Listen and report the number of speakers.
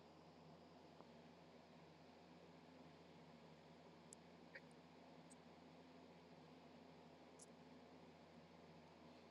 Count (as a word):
zero